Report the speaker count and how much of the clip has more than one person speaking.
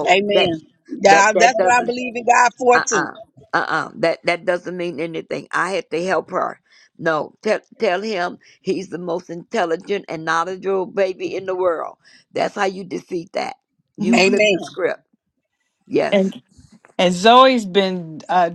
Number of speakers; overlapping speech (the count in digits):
3, about 12%